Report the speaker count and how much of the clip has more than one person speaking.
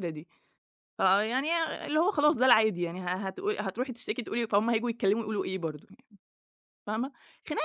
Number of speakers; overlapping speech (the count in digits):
1, no overlap